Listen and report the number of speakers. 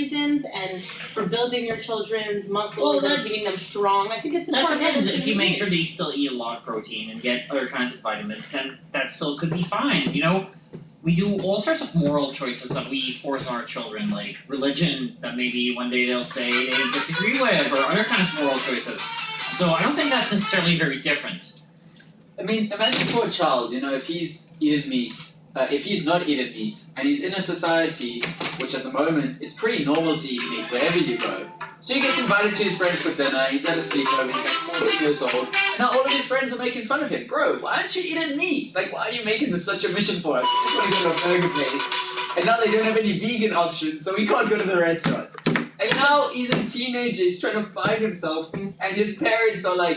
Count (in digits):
3